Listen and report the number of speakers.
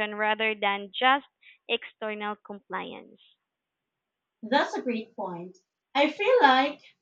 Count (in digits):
2